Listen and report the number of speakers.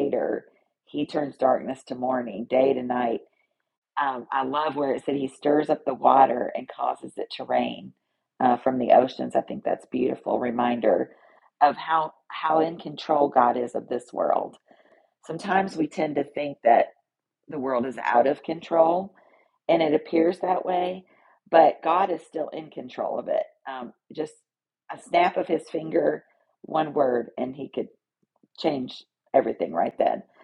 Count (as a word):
one